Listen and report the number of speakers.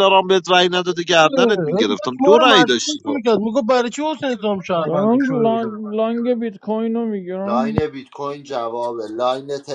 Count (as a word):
four